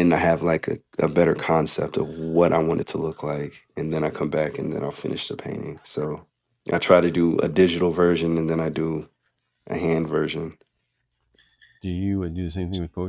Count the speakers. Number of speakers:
2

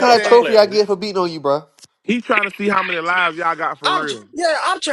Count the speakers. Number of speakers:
3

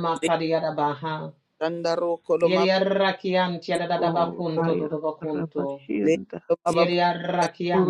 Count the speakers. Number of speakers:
3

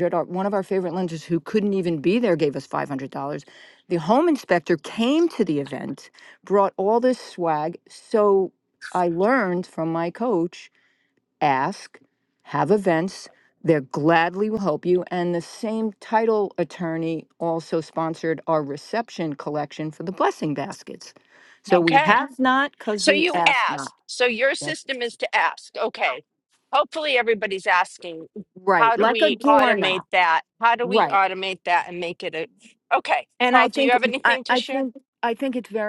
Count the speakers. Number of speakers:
2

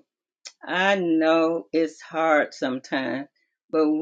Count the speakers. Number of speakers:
1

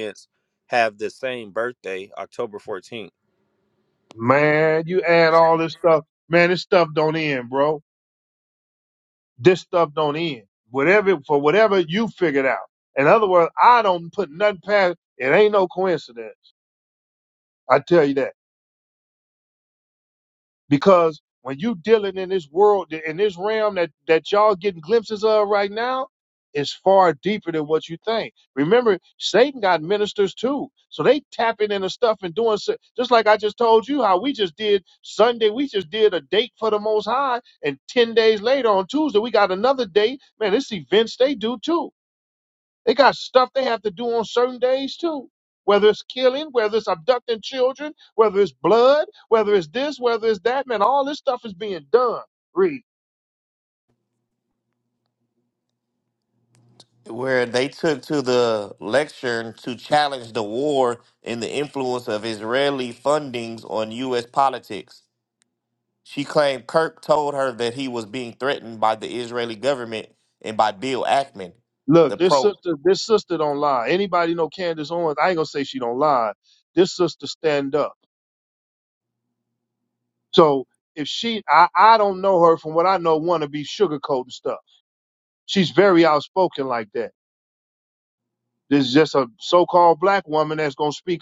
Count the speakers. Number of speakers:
3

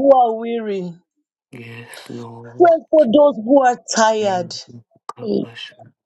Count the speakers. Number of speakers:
2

